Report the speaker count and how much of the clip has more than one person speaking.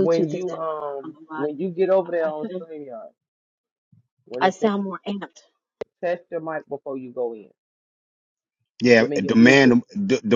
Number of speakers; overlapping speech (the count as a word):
three, about 23%